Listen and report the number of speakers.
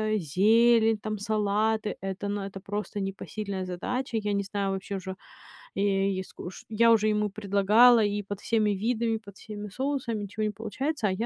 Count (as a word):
one